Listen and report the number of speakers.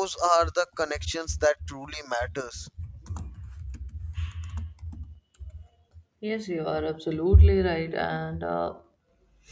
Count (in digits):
2